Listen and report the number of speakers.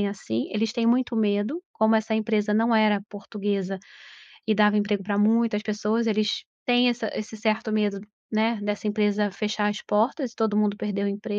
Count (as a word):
one